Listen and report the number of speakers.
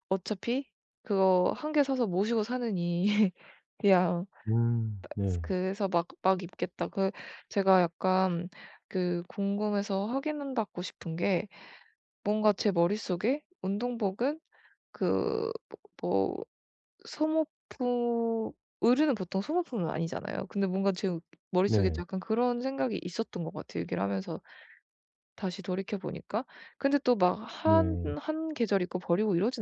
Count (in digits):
2